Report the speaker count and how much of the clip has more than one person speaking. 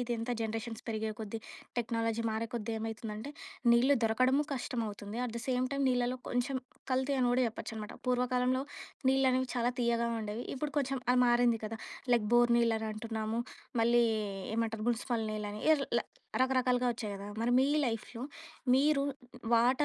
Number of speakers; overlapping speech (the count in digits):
1, no overlap